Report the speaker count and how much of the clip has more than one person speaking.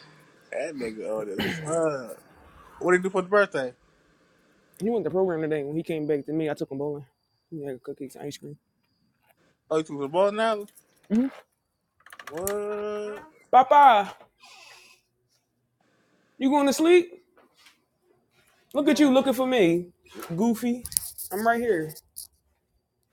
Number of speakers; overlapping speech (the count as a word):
two, no overlap